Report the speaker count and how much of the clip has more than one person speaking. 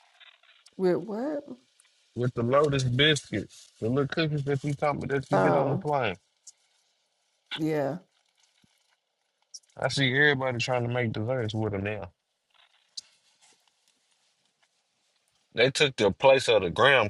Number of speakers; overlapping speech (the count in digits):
2, about 3%